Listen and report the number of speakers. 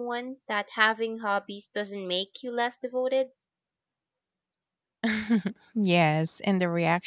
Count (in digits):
2